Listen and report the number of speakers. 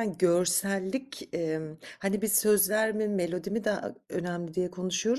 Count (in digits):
1